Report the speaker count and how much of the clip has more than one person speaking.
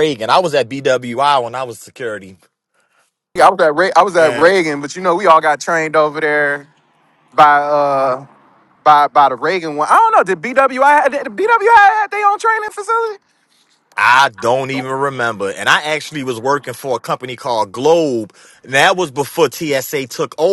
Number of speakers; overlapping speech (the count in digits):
2, about 2%